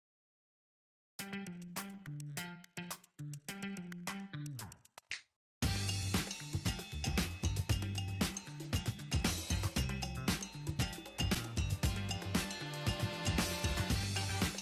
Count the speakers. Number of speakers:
zero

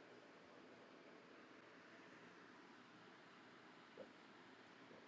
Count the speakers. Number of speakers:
zero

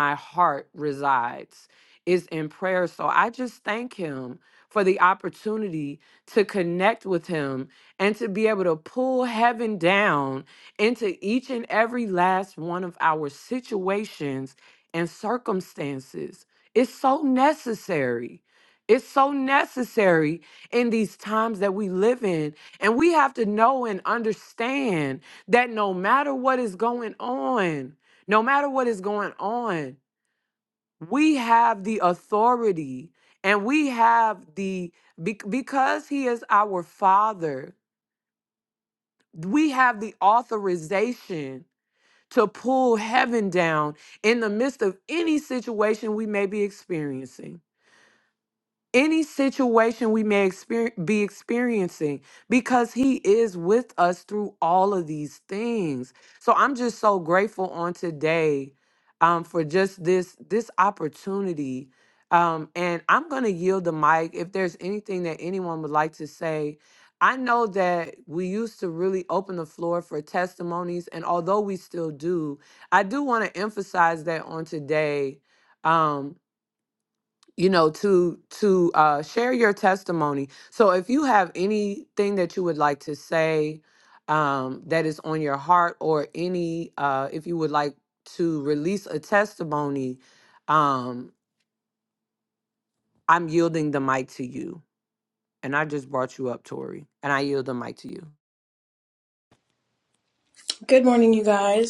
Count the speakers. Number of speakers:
two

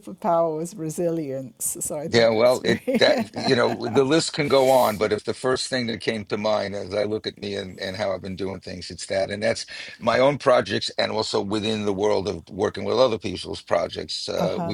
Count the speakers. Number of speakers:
two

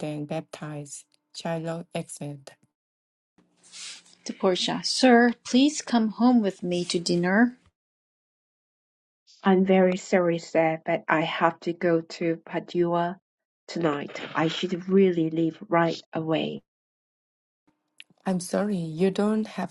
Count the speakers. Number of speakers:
three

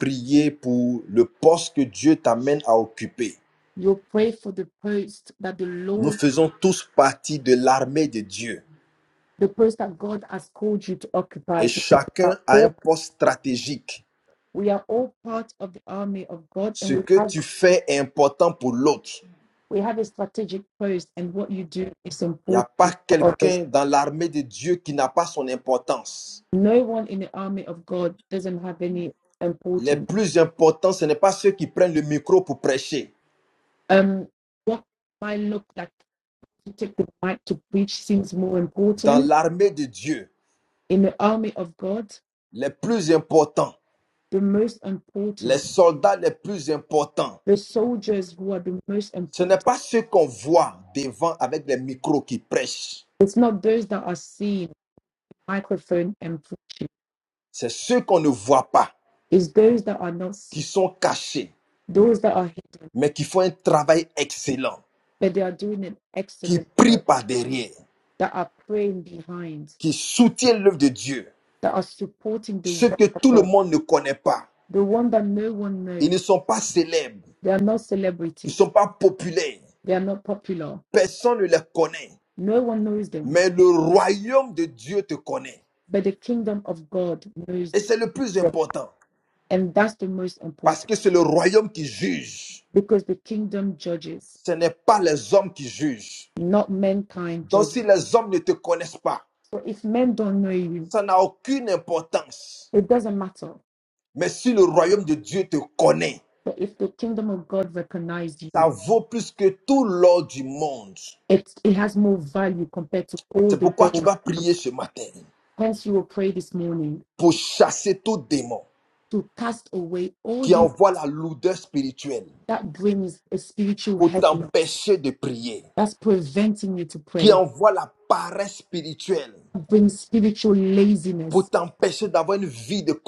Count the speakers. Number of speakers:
two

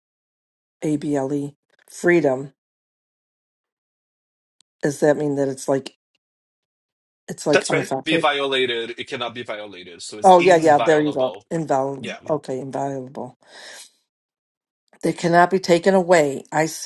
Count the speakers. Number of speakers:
two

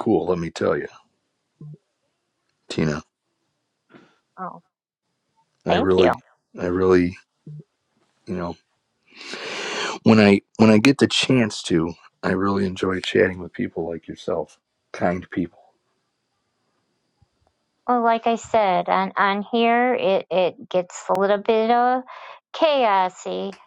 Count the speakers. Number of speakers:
two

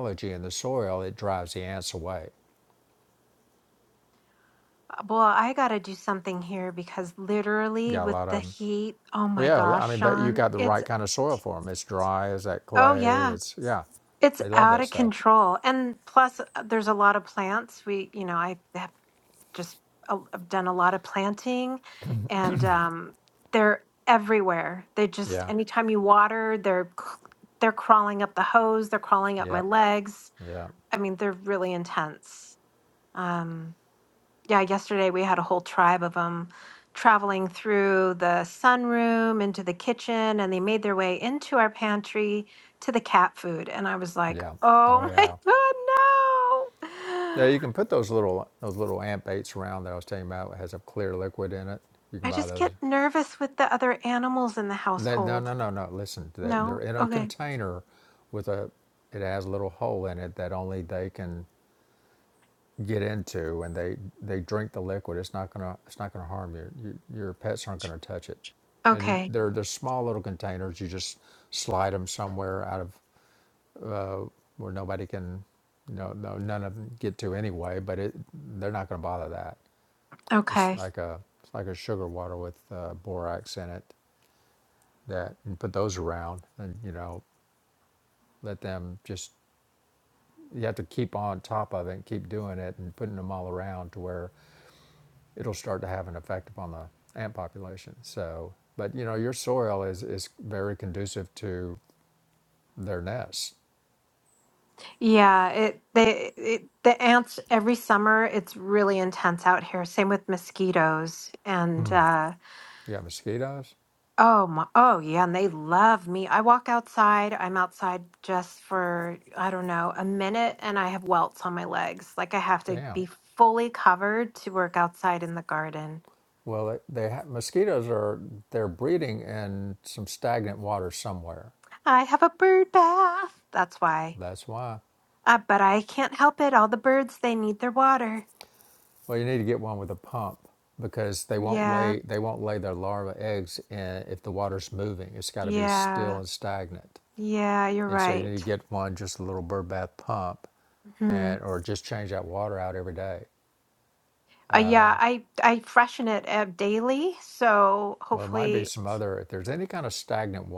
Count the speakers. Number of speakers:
two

